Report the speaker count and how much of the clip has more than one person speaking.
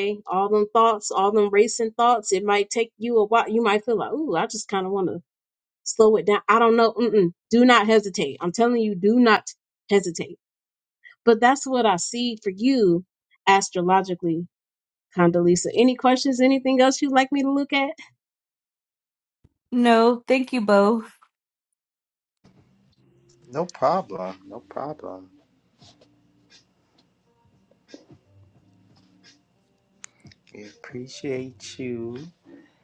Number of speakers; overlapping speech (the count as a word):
three, no overlap